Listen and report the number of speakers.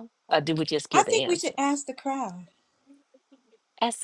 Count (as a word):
two